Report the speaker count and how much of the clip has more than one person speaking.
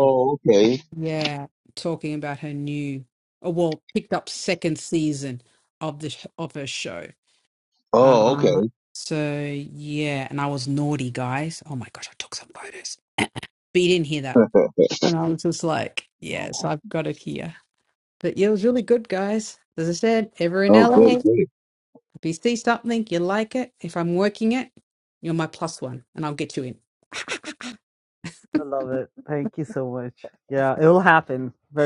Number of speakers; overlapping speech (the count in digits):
3, about 4%